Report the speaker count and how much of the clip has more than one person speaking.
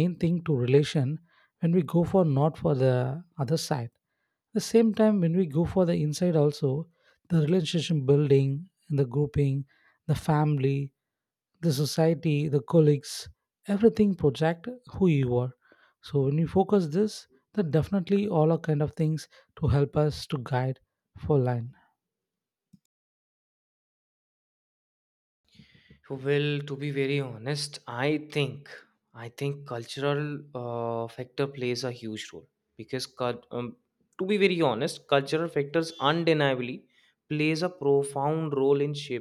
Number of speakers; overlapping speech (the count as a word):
two, no overlap